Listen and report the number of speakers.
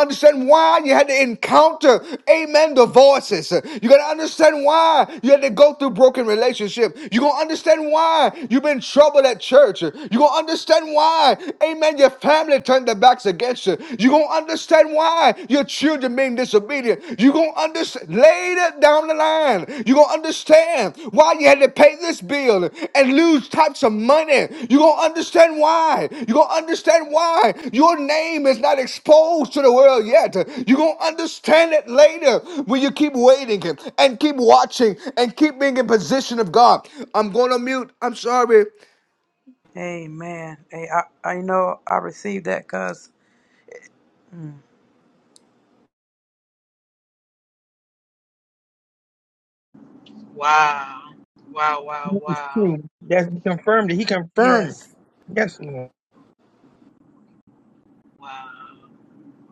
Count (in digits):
4